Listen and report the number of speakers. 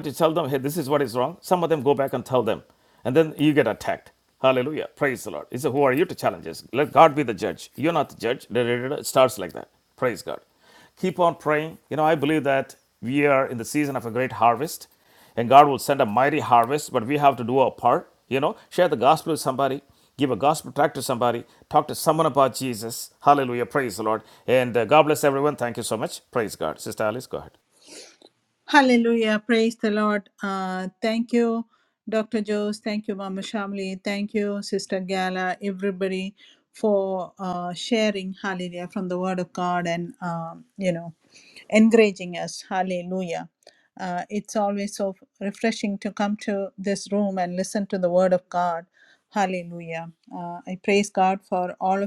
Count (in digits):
2